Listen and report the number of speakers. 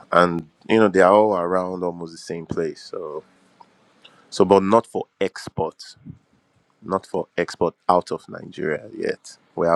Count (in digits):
1